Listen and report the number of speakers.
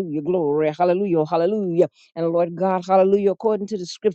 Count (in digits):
1